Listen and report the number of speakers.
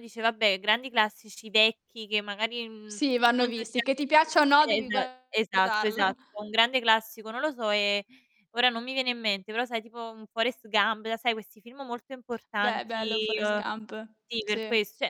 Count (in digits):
2